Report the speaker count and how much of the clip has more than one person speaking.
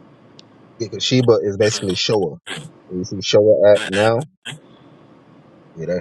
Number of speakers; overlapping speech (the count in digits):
1, no overlap